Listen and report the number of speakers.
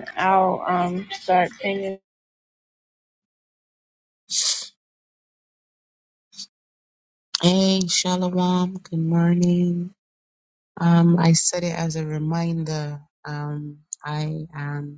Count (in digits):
2